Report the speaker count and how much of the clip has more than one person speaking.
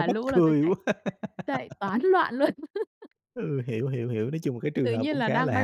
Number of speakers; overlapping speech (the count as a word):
two, about 28%